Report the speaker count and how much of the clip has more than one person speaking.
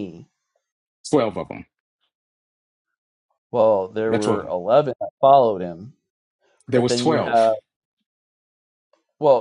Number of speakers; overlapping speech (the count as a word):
two, about 12%